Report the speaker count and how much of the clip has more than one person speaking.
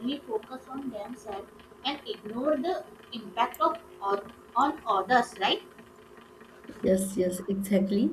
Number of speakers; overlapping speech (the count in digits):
2, no overlap